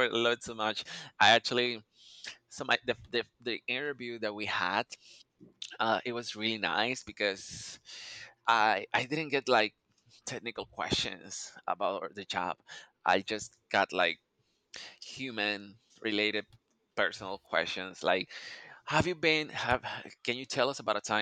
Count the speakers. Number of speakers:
one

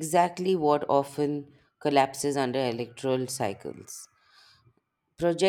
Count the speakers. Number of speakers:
one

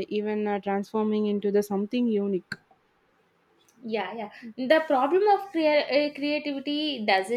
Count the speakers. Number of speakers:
two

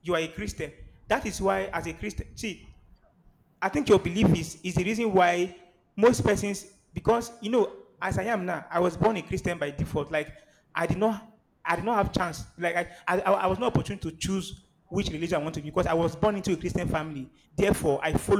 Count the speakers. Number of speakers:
one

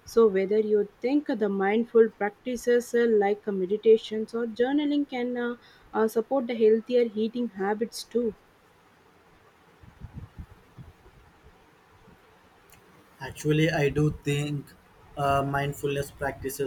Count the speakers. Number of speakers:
two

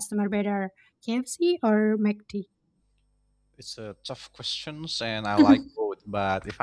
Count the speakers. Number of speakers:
two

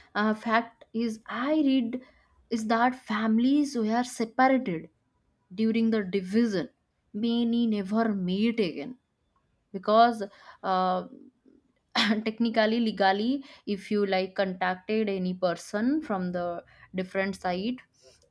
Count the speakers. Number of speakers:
one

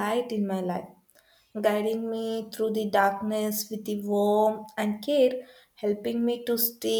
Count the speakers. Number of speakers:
one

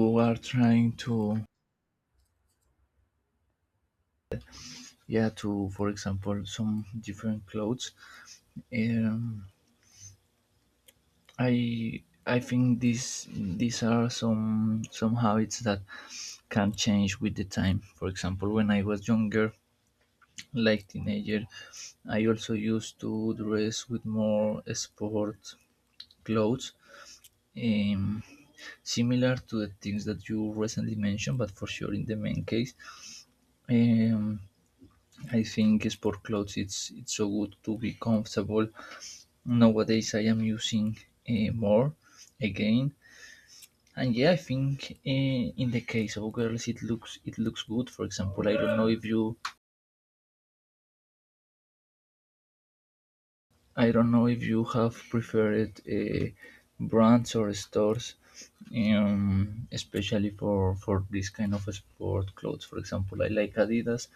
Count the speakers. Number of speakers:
one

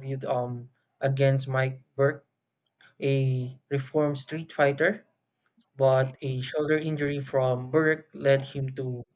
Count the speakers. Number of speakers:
one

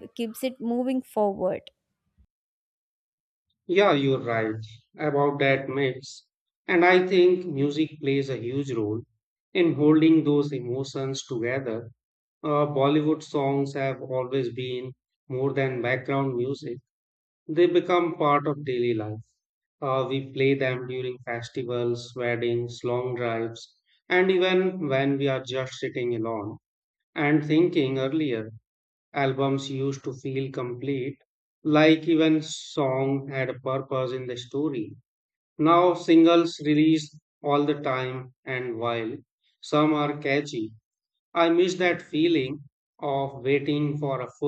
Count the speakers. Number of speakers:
two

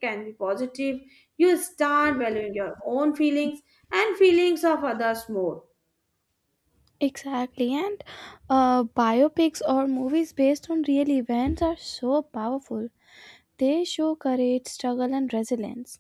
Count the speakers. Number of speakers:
two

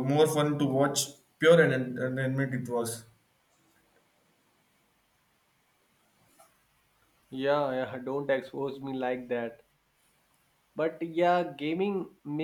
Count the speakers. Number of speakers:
two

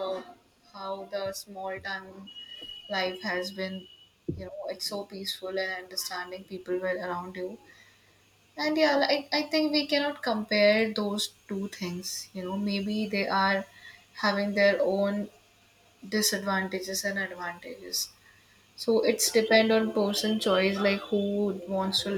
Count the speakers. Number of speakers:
one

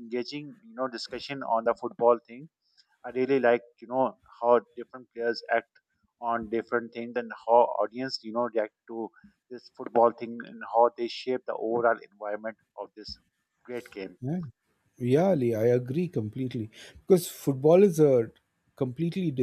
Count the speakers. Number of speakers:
two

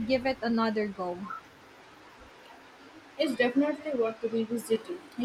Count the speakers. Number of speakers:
two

